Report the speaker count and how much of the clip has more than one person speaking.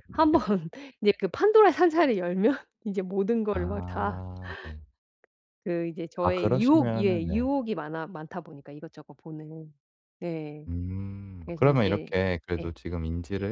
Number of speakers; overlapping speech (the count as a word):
two, about 21%